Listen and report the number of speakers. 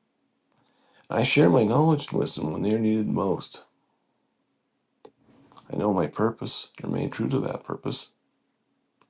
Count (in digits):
1